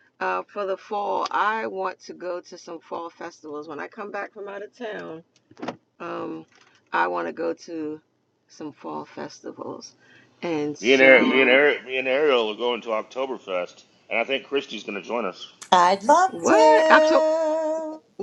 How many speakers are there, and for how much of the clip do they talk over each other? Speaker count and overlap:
3, about 9%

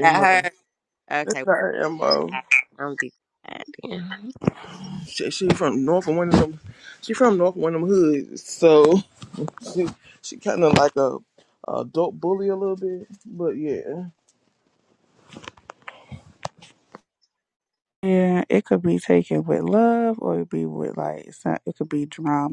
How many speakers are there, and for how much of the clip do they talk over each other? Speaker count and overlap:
3, about 3%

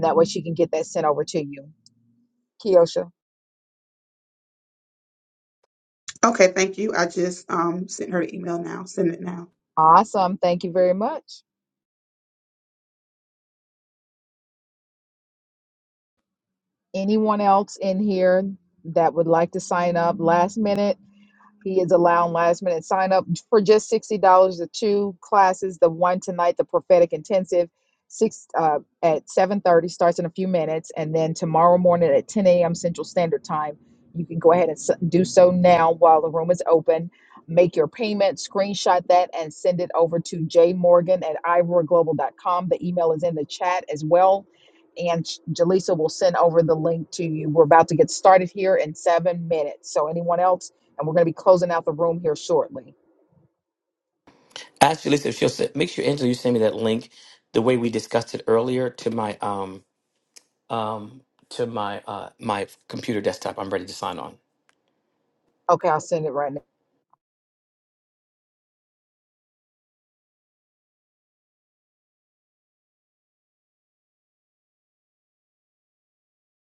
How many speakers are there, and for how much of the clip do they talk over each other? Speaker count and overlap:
3, no overlap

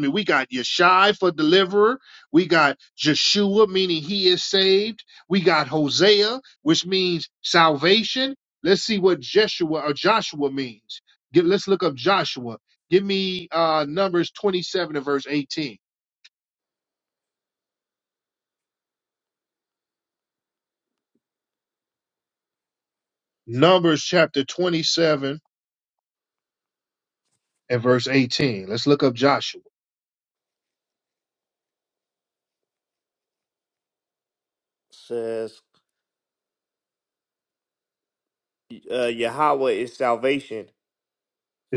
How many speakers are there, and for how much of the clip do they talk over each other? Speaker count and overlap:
2, no overlap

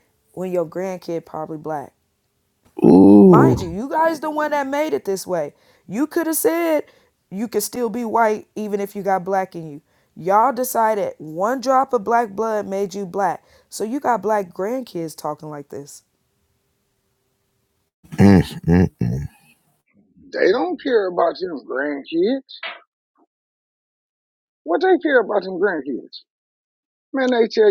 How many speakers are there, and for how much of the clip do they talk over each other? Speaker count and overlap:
3, about 1%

